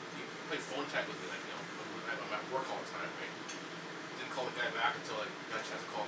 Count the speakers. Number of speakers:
one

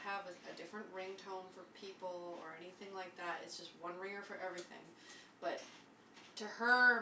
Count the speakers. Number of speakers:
one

